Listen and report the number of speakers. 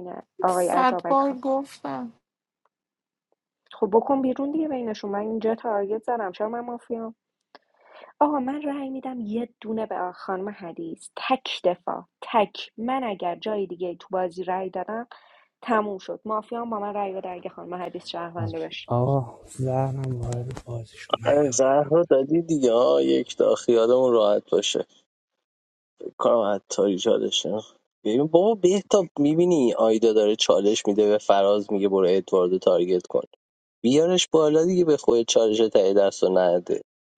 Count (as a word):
four